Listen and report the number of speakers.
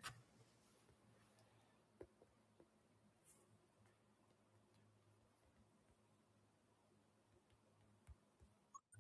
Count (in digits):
0